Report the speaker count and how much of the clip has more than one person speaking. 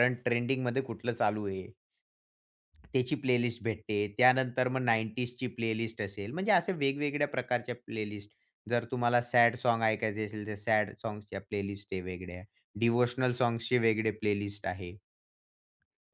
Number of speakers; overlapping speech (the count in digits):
1, no overlap